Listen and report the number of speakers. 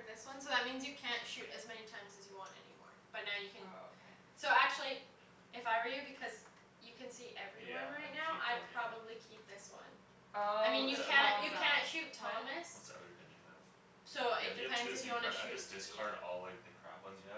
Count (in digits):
3